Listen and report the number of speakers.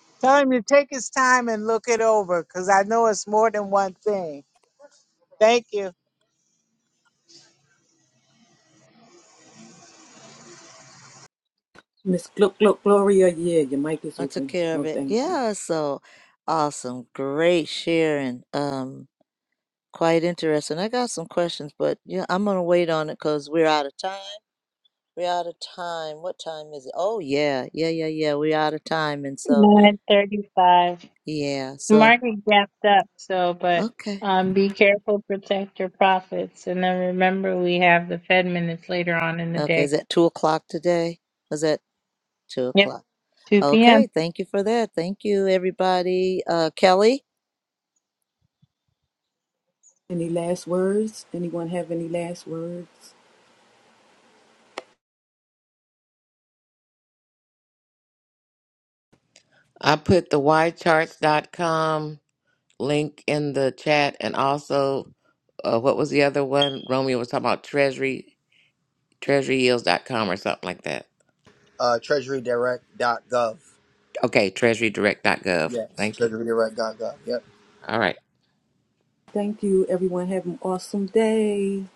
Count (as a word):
six